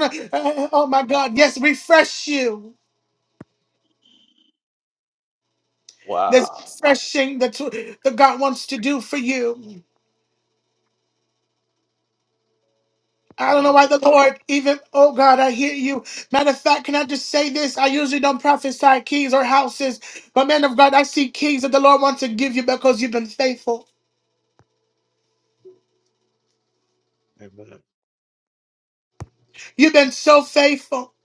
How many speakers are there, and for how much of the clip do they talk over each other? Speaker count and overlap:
2, about 1%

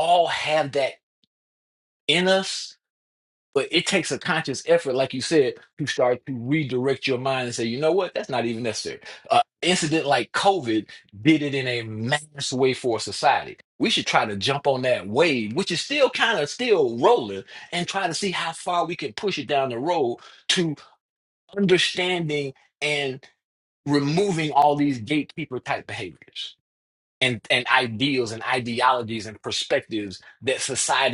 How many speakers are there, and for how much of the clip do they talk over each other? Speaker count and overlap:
1, no overlap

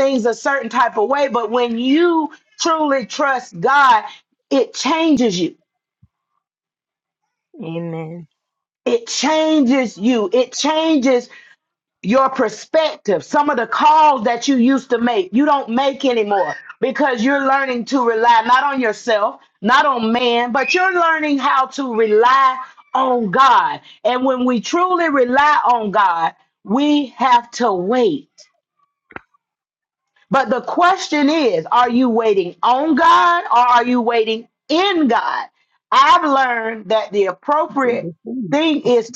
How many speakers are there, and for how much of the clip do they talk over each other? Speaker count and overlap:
2, about 1%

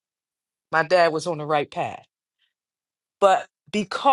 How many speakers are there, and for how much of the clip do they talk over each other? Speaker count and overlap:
1, no overlap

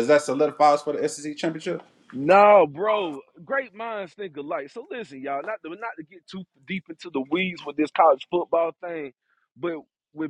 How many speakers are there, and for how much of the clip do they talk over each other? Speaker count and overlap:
2, no overlap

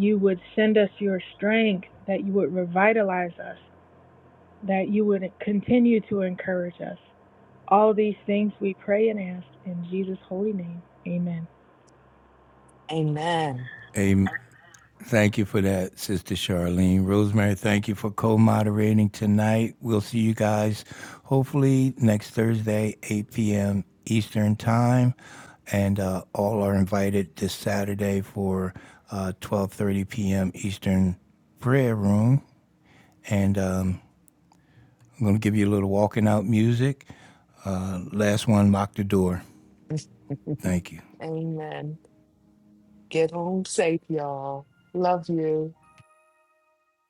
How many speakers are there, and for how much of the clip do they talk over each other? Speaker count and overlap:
3, no overlap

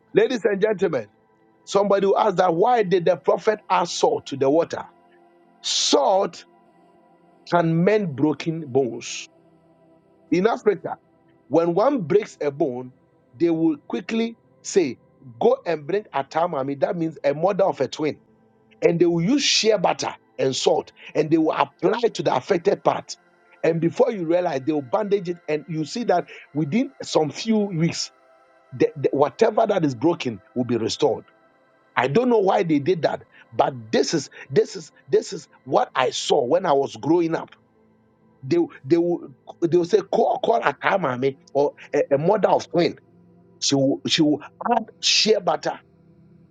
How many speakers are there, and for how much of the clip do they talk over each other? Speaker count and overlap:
1, no overlap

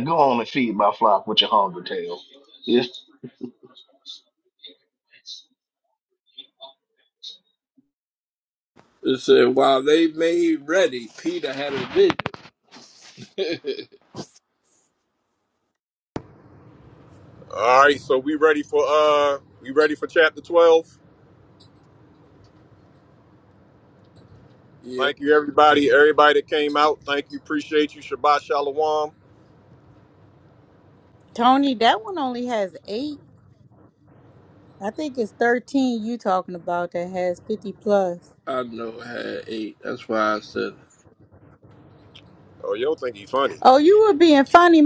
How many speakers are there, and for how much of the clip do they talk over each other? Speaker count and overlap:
4, under 1%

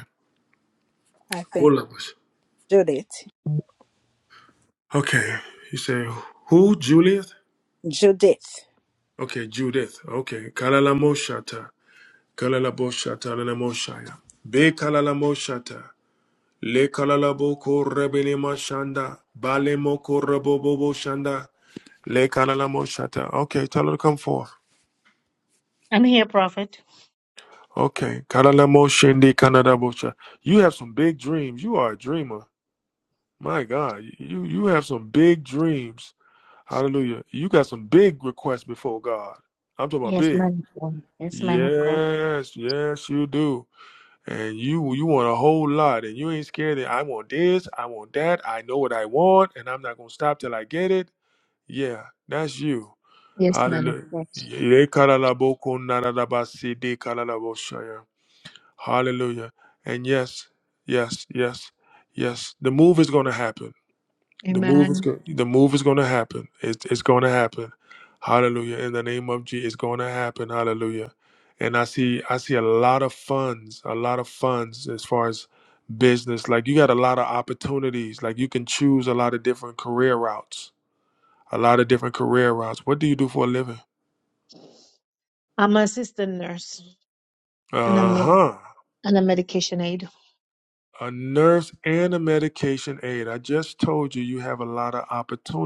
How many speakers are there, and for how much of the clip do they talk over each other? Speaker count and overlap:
3, about 3%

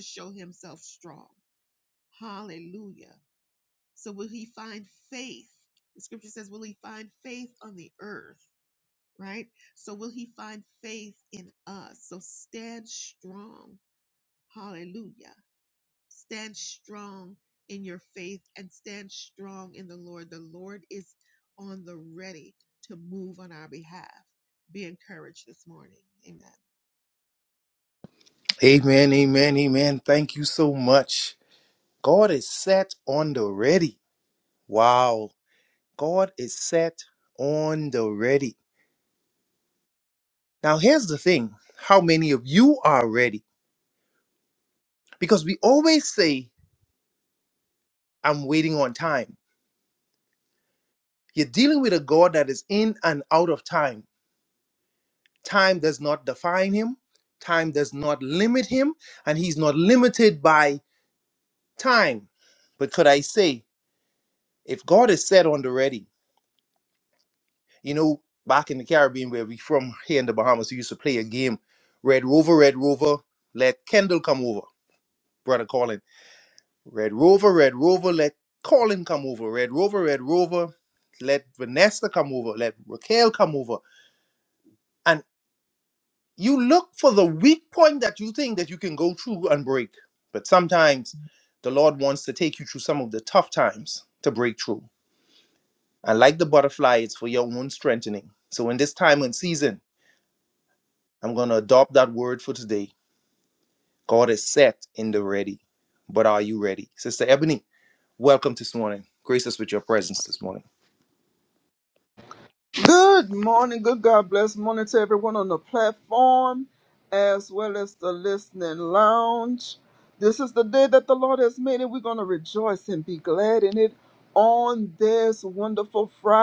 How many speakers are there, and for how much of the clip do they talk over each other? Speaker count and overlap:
3, no overlap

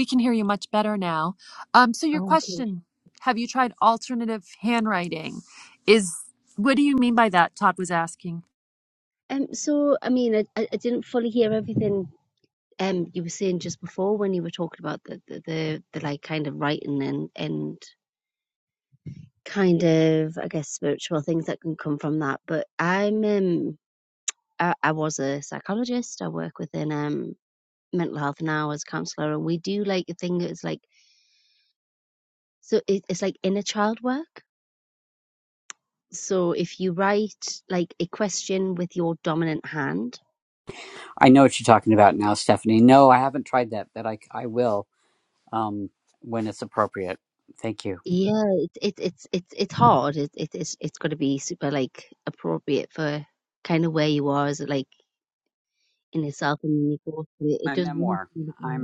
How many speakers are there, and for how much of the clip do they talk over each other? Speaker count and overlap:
3, about 2%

